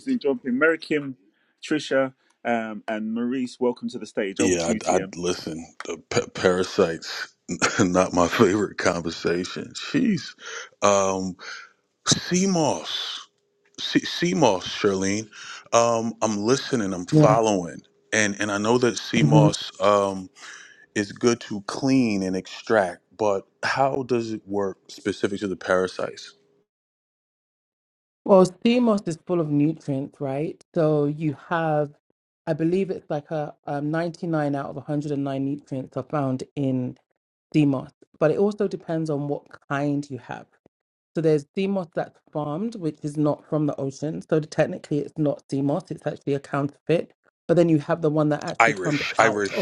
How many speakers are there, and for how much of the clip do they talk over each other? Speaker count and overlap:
3, about 4%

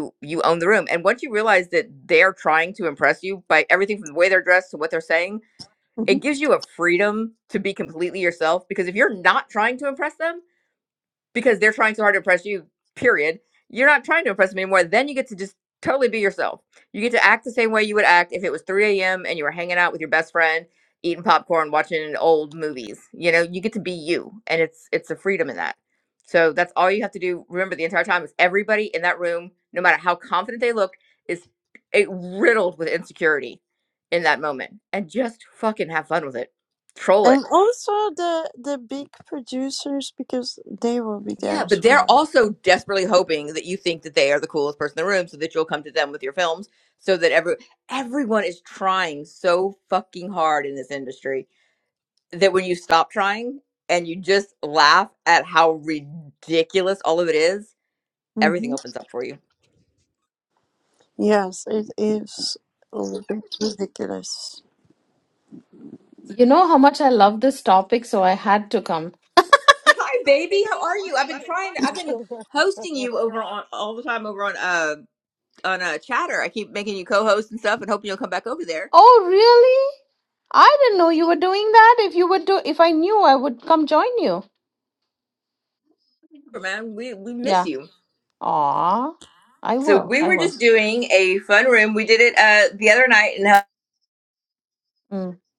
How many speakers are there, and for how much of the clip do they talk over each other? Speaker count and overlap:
3, about 2%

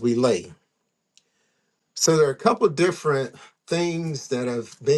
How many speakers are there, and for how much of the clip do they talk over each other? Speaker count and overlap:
1, no overlap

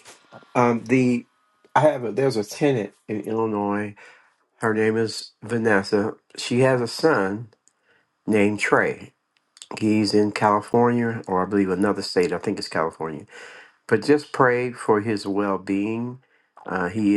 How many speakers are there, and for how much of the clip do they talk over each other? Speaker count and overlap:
1, no overlap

